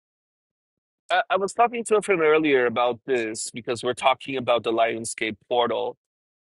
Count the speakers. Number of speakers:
one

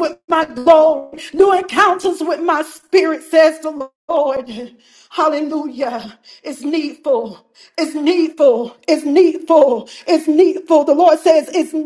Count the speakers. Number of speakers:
one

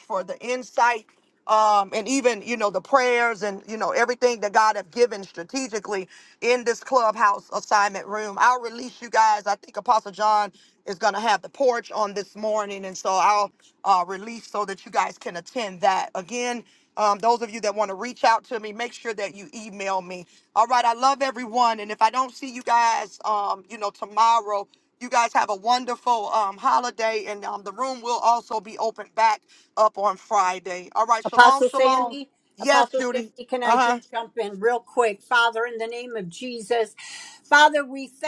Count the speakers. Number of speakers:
two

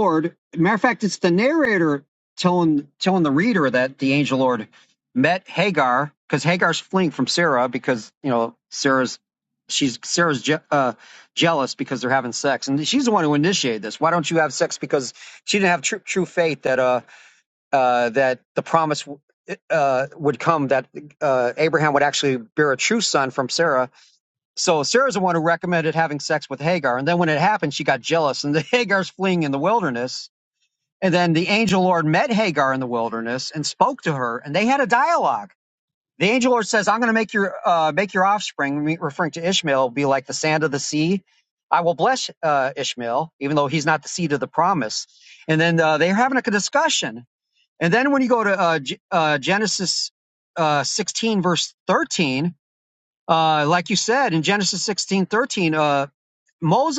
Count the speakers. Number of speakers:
one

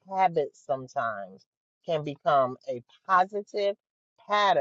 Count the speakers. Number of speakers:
one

